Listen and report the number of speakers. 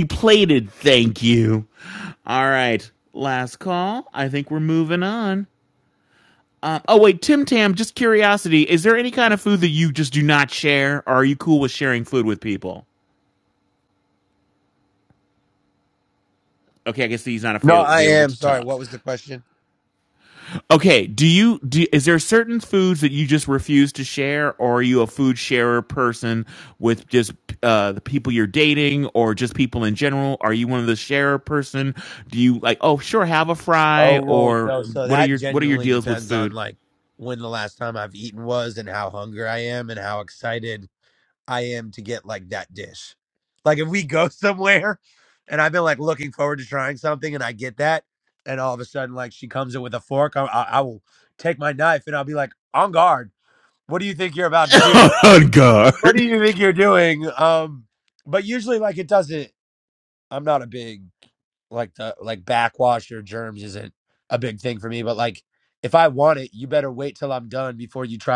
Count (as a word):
two